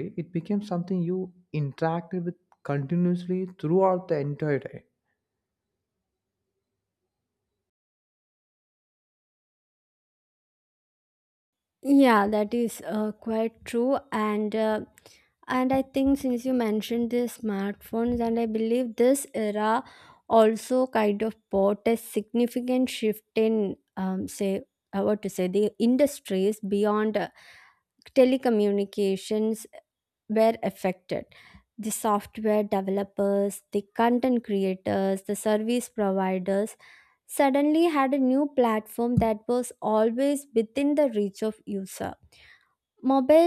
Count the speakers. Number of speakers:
two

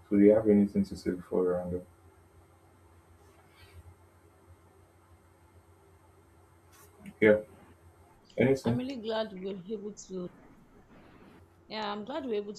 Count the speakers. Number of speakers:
two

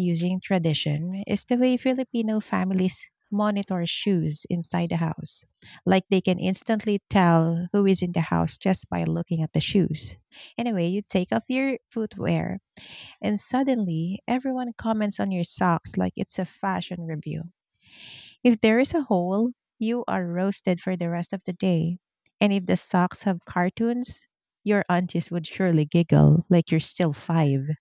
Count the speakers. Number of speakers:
one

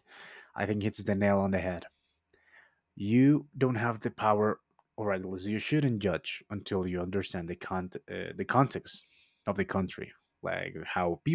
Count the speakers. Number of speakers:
one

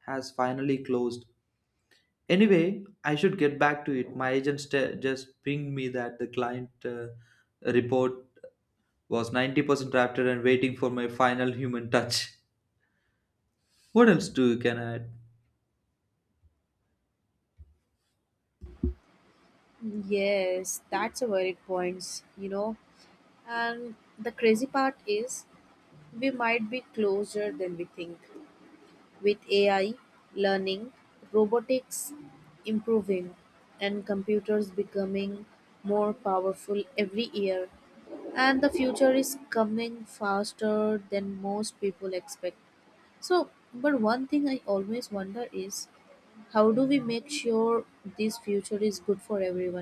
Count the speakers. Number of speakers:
two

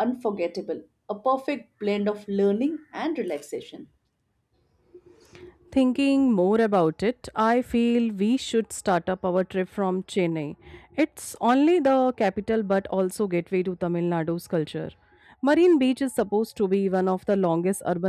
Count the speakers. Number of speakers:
two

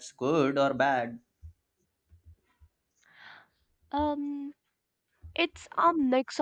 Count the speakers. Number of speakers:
two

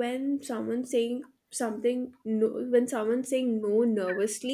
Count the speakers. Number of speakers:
one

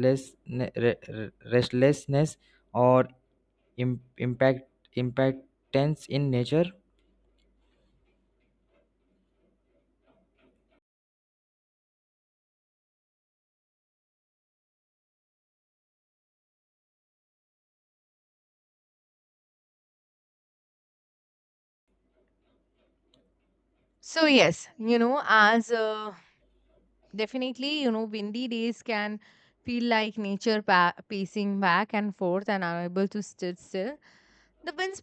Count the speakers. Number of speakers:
two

